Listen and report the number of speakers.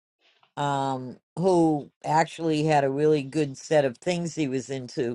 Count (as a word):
one